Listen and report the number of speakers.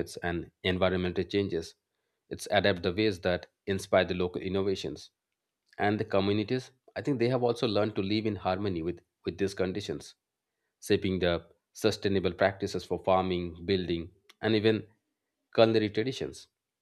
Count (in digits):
1